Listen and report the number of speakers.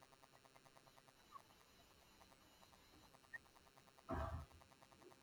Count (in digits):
0